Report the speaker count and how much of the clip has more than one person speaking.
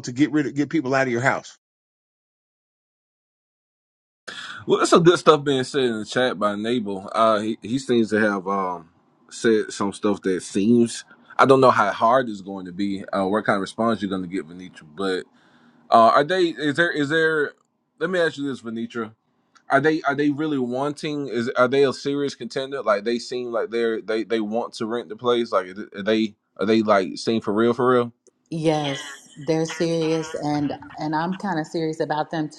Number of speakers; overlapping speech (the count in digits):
3, no overlap